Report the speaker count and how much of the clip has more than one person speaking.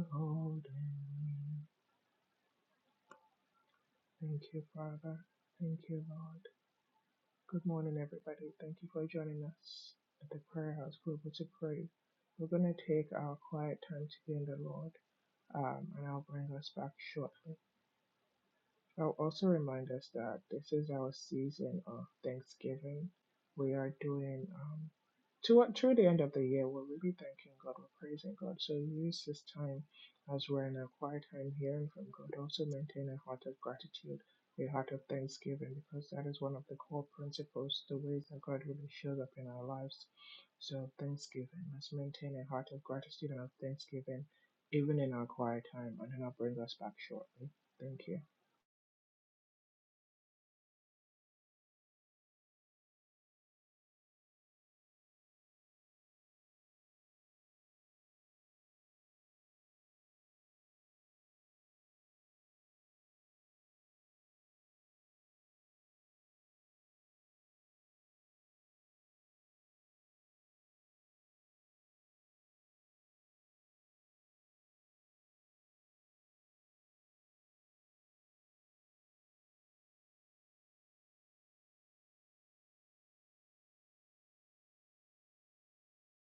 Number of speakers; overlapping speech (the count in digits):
1, no overlap